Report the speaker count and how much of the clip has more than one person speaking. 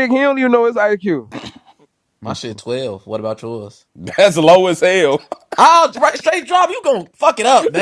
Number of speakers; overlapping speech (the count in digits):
3, no overlap